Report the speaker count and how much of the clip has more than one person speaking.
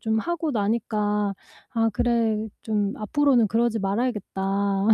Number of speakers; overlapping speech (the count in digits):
1, no overlap